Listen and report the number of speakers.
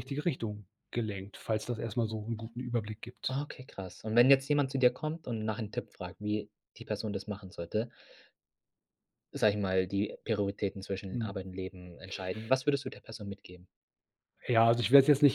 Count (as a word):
two